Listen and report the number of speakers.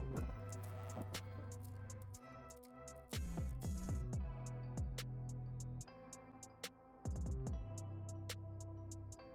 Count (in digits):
0